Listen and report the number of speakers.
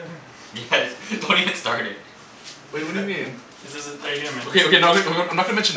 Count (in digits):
3